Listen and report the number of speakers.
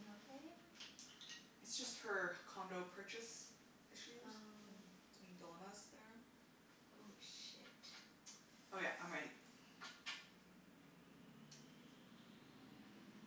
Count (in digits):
2